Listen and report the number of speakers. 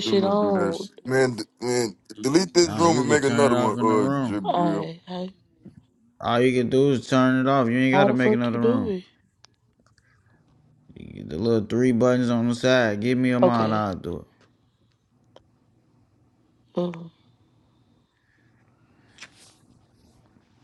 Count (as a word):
three